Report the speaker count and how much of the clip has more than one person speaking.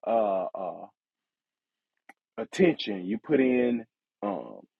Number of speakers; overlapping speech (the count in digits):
1, no overlap